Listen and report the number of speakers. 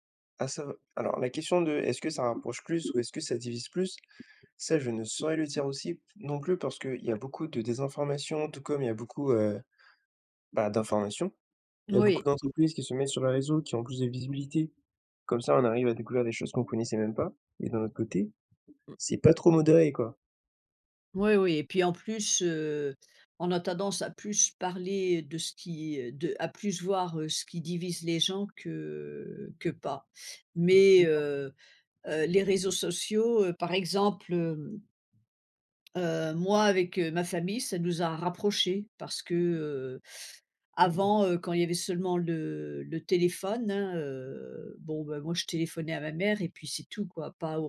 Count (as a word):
two